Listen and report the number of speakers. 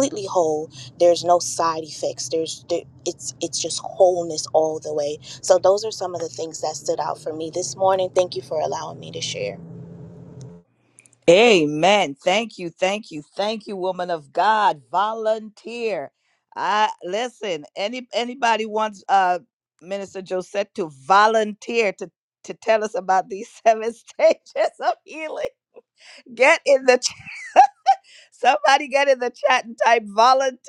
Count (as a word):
two